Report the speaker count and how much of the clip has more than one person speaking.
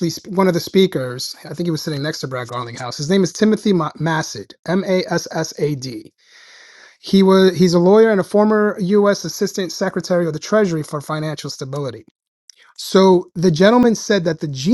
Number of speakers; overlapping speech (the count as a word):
one, no overlap